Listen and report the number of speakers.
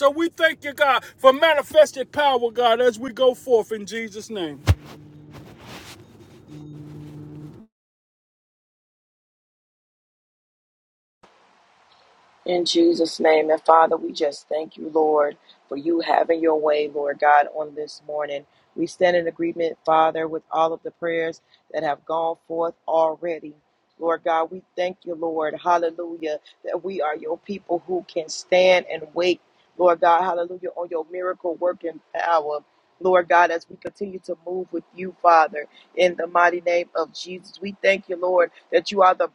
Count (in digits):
2